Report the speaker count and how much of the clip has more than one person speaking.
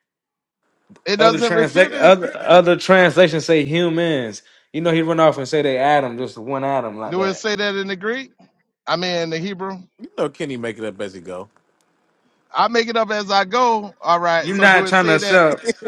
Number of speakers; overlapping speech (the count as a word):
three, about 14%